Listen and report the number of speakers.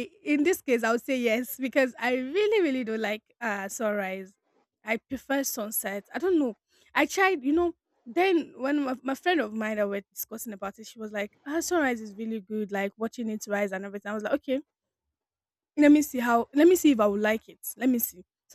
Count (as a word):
one